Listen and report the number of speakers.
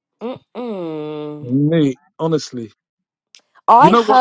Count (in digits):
2